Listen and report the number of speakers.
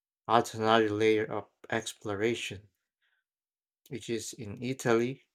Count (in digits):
1